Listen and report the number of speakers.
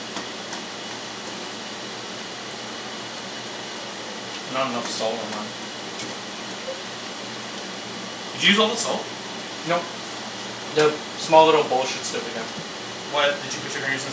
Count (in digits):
2